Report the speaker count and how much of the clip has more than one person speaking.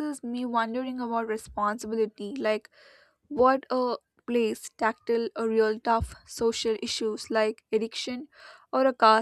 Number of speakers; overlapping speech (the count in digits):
1, no overlap